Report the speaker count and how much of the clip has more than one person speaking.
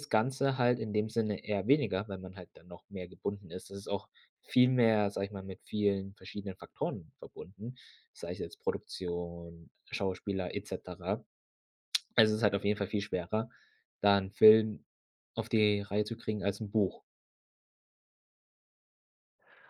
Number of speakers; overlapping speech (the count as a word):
one, no overlap